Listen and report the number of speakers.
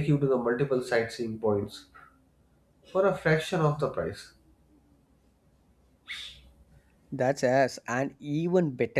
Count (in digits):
2